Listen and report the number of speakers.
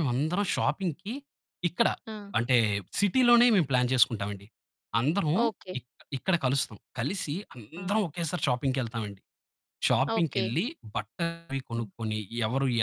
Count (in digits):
2